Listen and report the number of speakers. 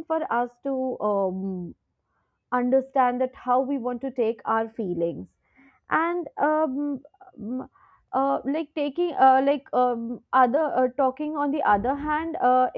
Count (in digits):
1